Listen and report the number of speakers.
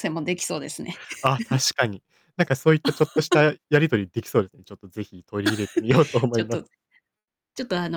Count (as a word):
two